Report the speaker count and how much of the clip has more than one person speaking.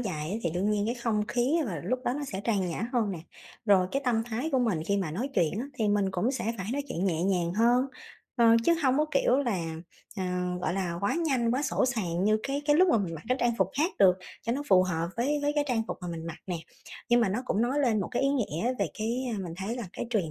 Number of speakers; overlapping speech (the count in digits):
1, no overlap